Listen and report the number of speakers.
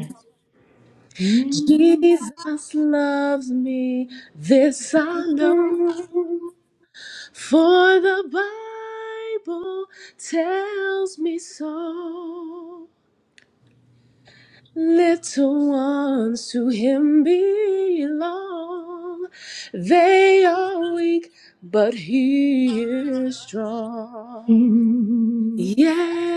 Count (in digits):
2